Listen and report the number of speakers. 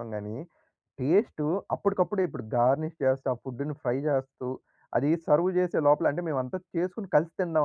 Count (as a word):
one